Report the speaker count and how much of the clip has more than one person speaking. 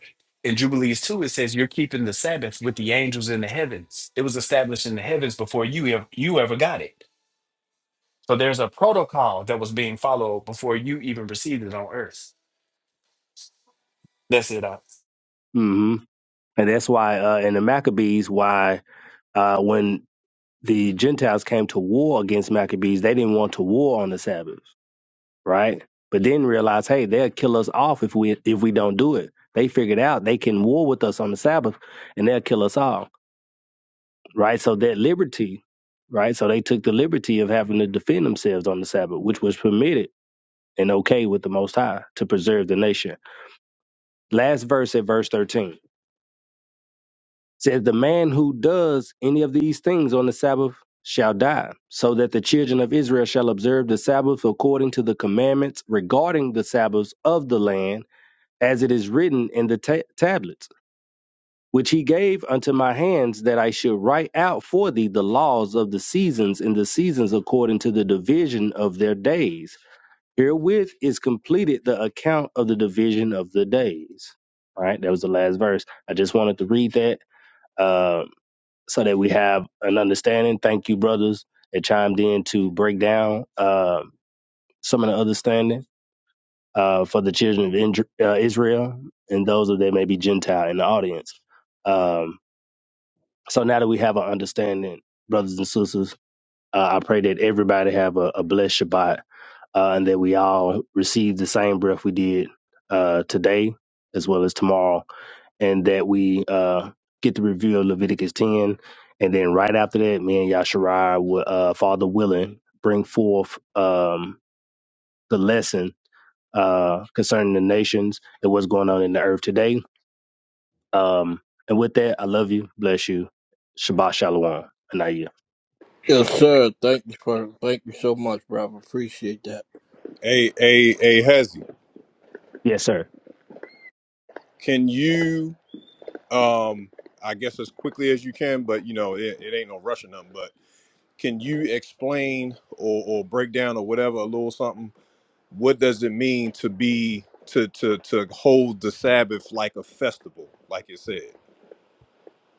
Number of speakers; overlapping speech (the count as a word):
four, no overlap